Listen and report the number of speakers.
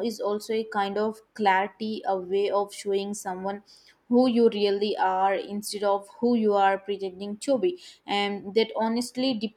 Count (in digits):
1